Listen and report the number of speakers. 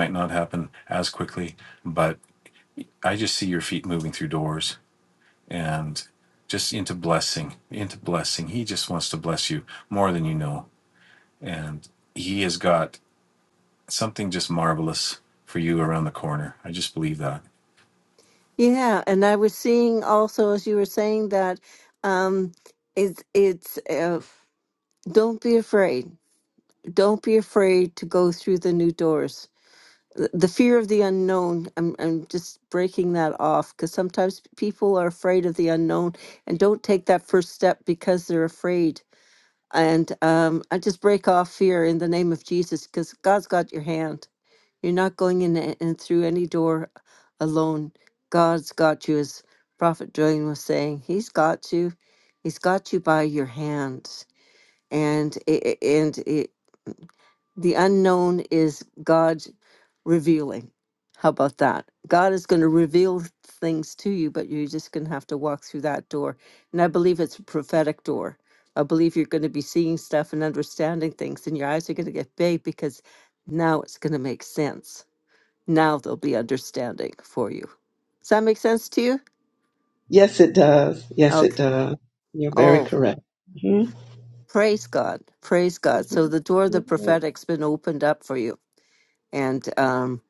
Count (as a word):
three